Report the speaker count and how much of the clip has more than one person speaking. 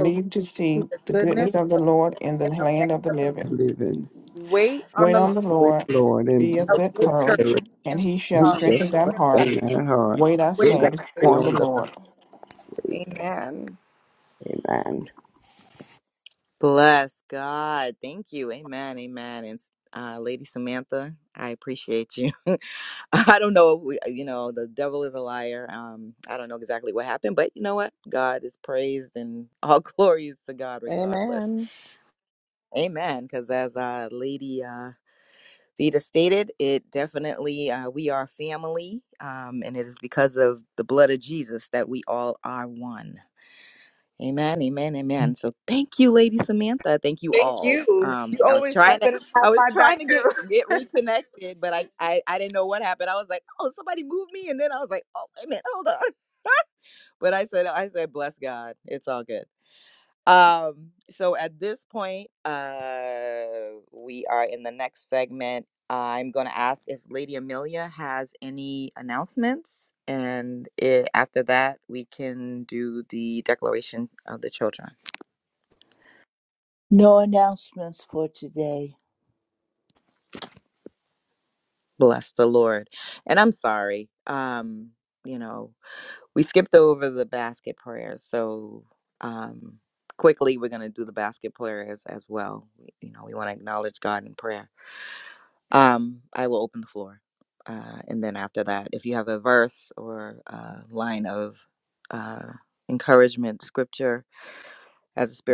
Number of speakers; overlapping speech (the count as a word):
five, about 9%